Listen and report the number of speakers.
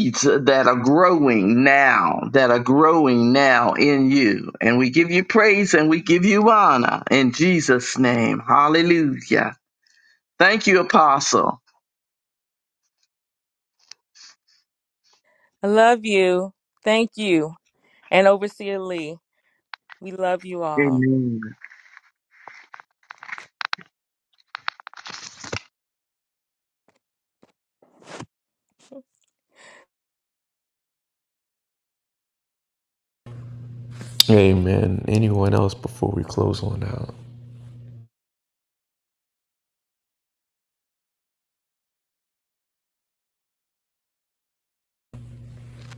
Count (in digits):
3